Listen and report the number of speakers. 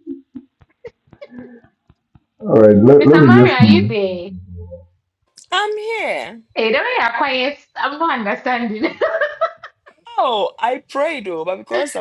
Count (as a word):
three